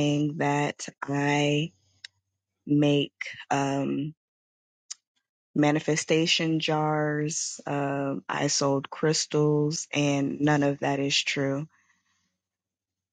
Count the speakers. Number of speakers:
1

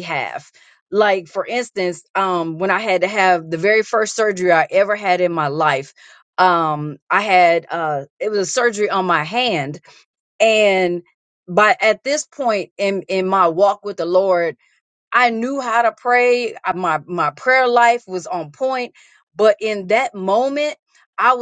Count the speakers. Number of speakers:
1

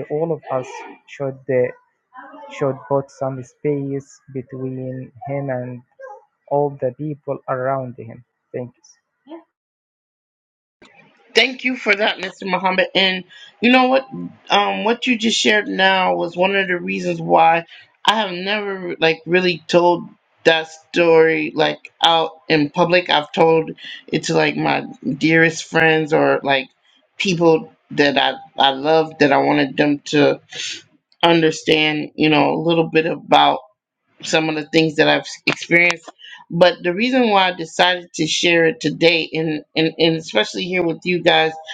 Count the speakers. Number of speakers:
2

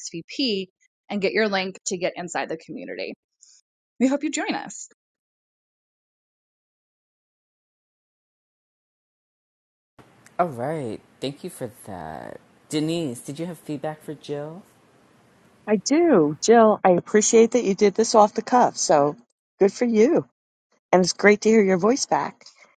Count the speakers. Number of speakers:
3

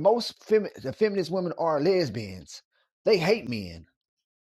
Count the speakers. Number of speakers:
1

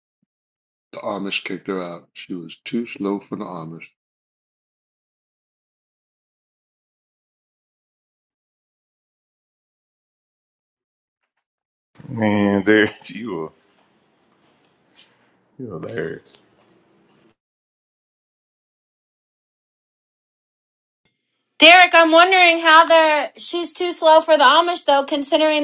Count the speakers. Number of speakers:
3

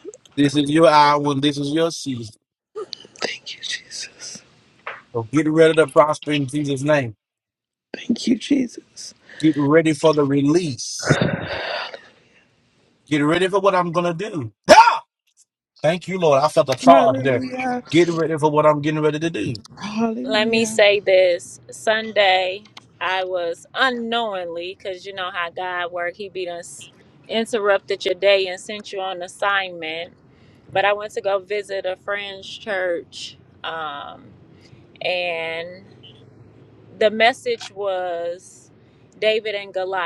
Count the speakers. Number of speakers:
3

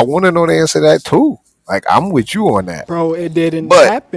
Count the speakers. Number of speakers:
2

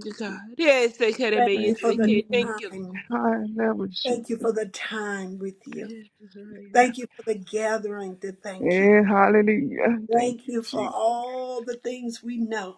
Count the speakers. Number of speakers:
3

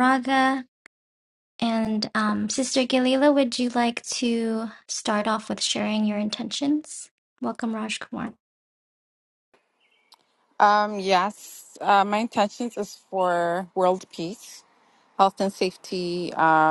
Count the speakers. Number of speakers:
2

